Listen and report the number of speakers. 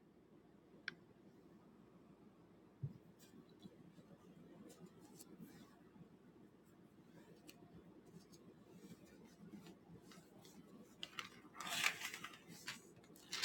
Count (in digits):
0